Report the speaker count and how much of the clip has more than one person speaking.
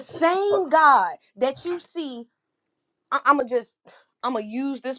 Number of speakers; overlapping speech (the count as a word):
one, no overlap